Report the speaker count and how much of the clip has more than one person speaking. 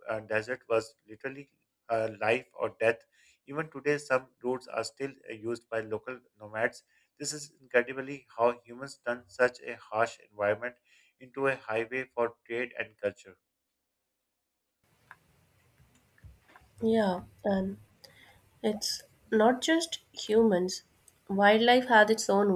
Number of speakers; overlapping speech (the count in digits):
2, no overlap